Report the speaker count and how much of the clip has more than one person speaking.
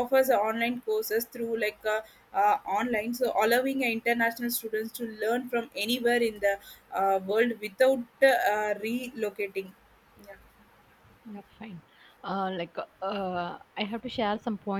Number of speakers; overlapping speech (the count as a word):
two, no overlap